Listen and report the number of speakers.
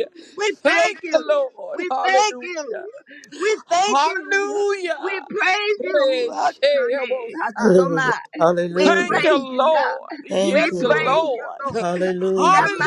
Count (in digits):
3